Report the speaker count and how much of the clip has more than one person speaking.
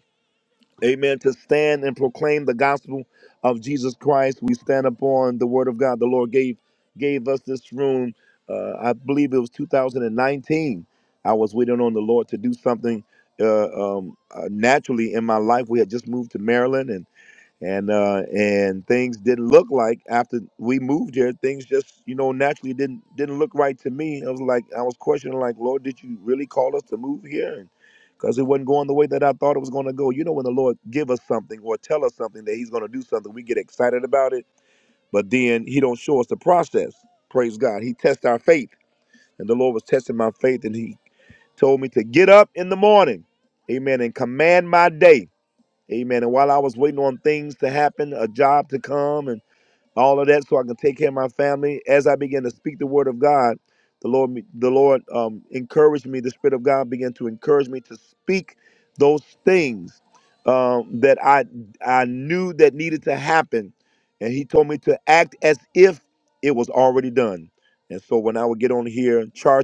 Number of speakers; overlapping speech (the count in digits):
1, no overlap